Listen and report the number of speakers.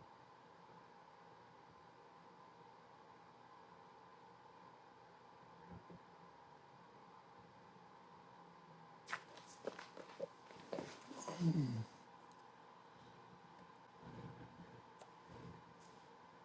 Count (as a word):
zero